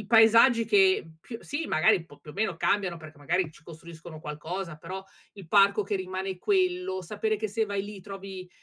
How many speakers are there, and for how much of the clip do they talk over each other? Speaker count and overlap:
one, no overlap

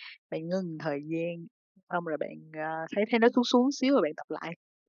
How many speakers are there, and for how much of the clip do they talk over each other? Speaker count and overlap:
one, no overlap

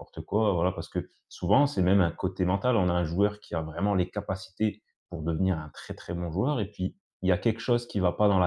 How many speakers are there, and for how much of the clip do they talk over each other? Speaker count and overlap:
one, no overlap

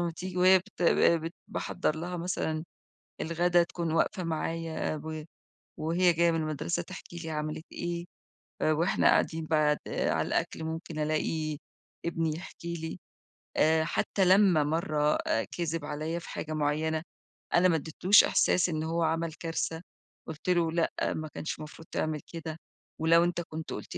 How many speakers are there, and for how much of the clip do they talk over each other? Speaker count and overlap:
one, no overlap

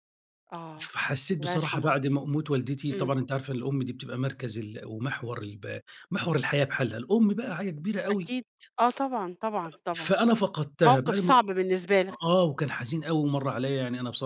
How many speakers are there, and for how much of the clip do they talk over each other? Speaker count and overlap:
two, about 10%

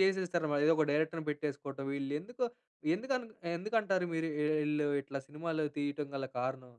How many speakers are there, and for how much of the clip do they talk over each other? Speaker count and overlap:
one, no overlap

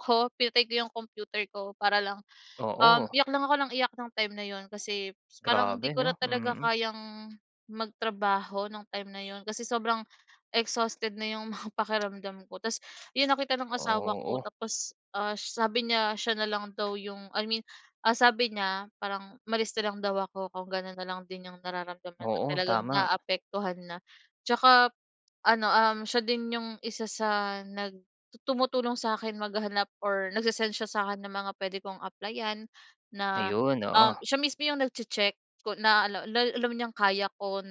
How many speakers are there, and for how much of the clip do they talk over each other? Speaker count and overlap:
two, about 10%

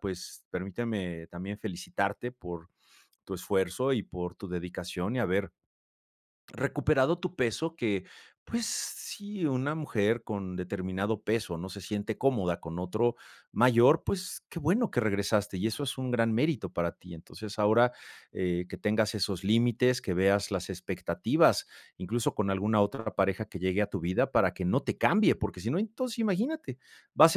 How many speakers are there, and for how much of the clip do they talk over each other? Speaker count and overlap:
one, no overlap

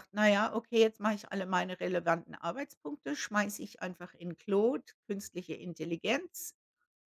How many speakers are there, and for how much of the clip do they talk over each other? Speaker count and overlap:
one, no overlap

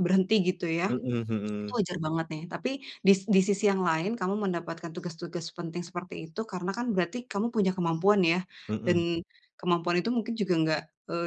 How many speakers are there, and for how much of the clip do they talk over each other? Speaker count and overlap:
two, about 2%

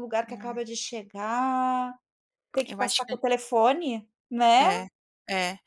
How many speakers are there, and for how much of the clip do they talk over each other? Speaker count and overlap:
two, about 16%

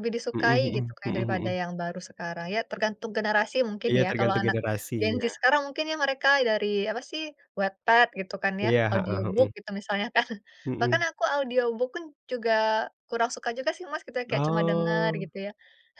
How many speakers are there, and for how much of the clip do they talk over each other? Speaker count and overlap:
two, about 27%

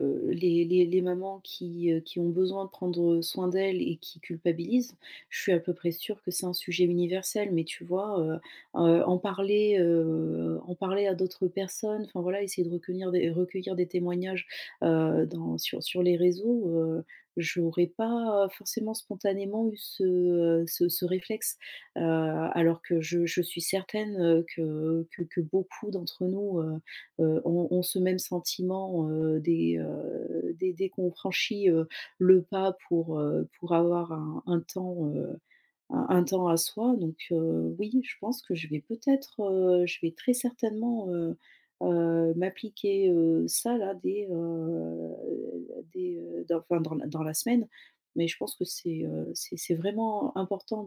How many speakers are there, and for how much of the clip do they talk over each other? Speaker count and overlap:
one, no overlap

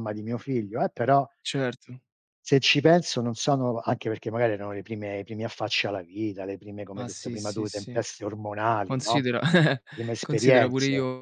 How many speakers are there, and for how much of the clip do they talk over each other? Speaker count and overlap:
two, about 19%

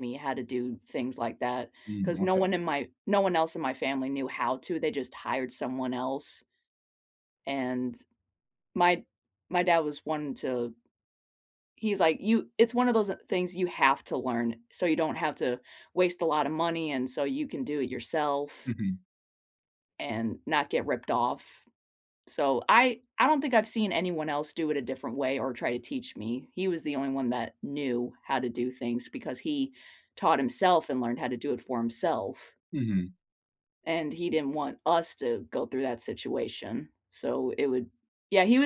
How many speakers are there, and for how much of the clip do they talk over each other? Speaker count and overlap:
two, about 1%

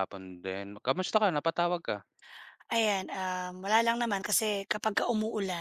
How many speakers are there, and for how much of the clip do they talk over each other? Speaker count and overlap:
two, no overlap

